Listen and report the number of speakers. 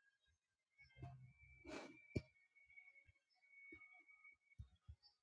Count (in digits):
0